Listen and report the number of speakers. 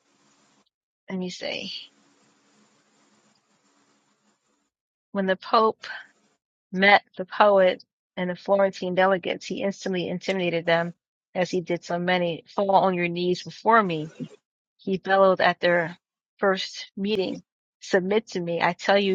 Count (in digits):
1